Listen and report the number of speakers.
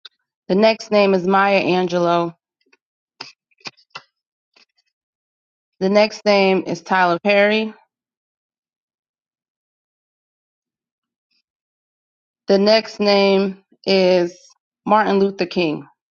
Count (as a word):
one